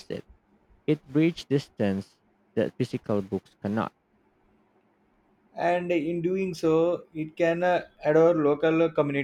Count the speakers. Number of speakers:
2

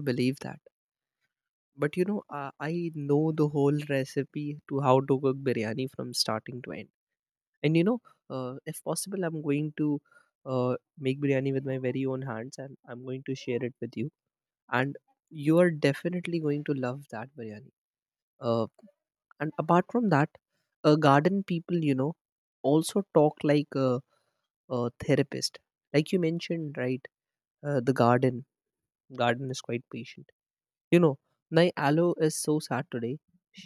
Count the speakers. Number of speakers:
1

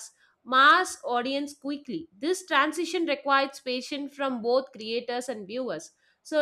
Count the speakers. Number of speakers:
1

